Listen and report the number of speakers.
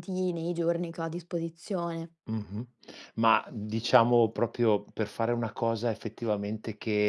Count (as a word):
two